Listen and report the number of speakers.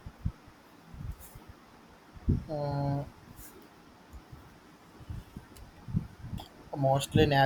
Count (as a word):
one